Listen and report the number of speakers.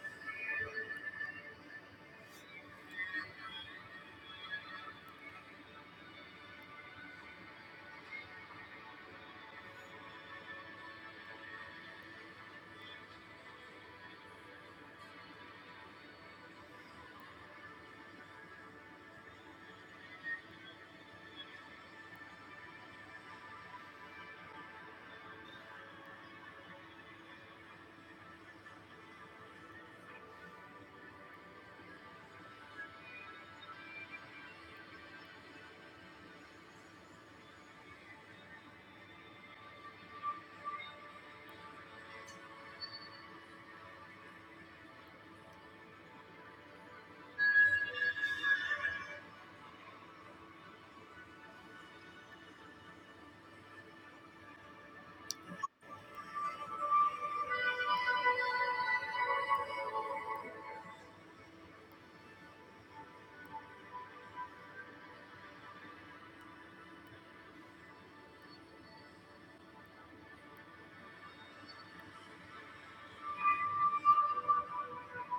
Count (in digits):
0